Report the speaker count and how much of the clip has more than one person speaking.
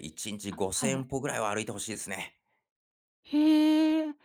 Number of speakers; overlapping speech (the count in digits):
2, about 12%